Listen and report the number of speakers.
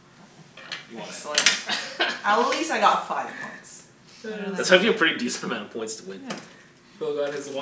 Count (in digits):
3